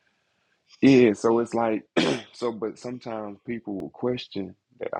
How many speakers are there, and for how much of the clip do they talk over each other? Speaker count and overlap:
1, no overlap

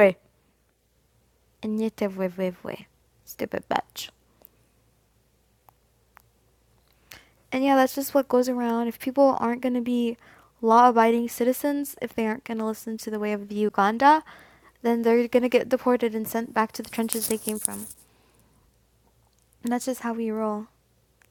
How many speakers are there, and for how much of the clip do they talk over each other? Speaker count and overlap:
1, no overlap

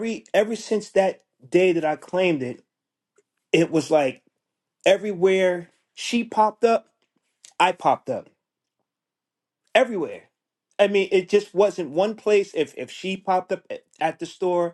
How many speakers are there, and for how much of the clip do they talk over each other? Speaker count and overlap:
1, no overlap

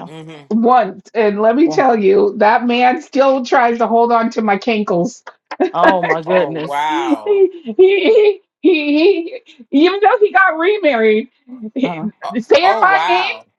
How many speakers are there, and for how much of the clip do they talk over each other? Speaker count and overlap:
3, about 16%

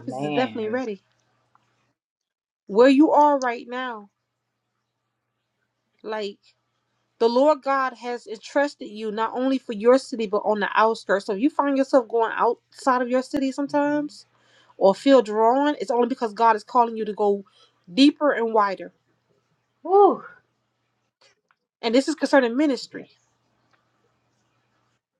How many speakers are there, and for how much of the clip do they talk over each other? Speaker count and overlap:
2, about 5%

